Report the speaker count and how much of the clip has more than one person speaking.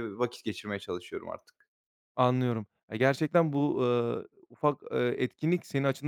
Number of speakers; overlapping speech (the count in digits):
2, no overlap